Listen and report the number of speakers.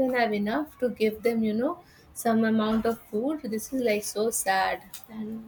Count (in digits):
1